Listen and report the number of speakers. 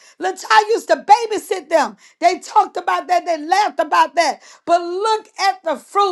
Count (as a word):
one